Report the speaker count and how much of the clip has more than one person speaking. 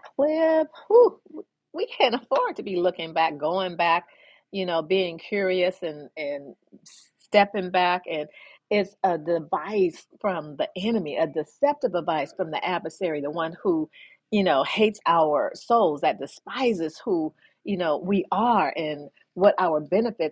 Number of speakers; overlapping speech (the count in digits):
1, no overlap